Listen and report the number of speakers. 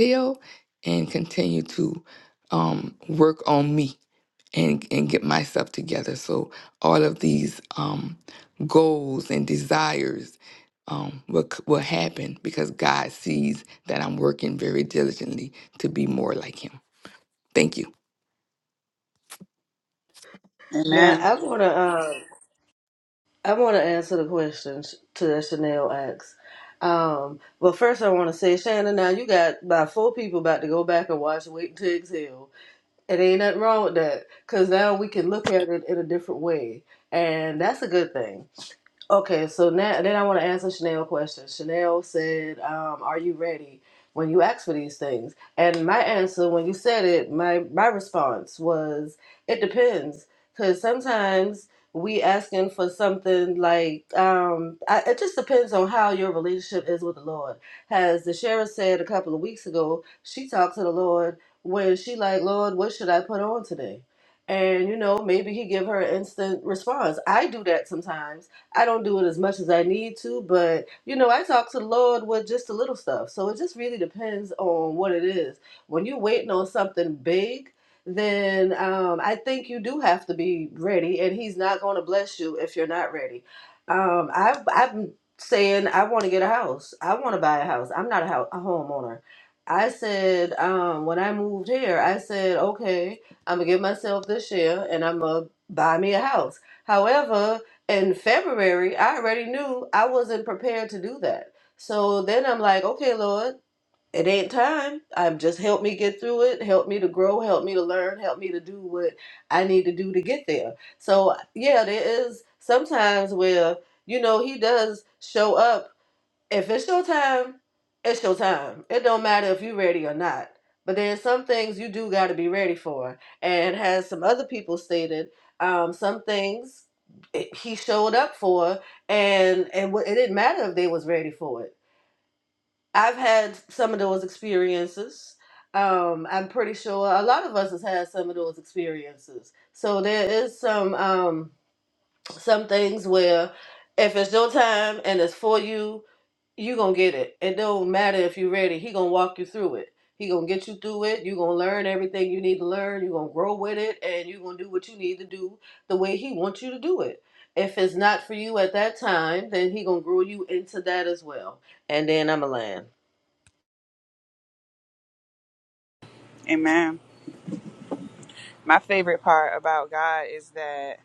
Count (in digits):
3